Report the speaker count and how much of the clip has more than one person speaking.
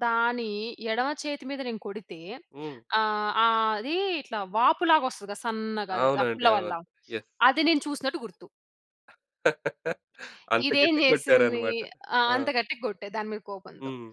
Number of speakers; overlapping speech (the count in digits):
2, about 15%